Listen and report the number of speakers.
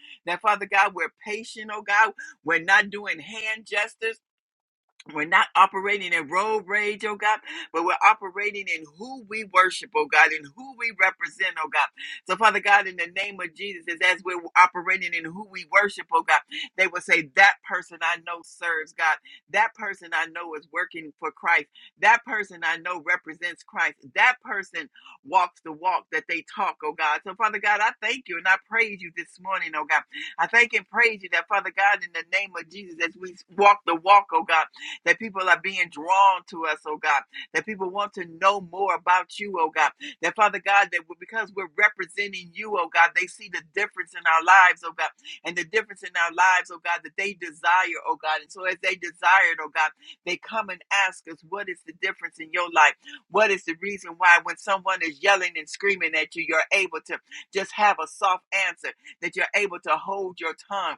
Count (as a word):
one